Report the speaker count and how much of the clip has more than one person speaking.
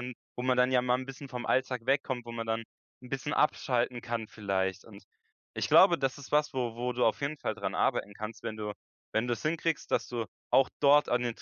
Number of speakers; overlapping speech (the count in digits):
1, no overlap